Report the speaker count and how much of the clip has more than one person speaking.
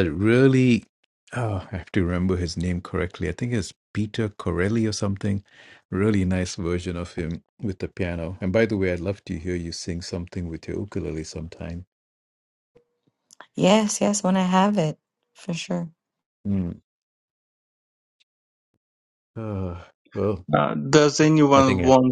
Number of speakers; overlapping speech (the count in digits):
3, about 2%